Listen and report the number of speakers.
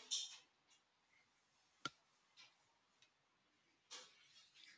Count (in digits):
0